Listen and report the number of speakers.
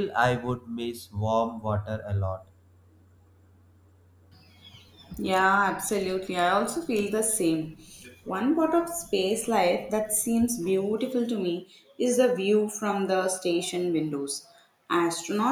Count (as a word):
two